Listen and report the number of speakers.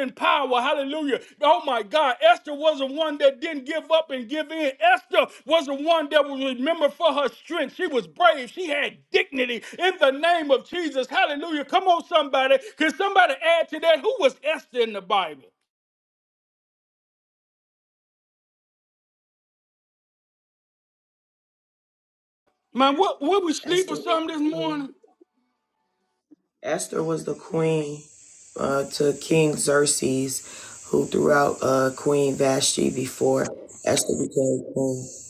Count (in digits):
2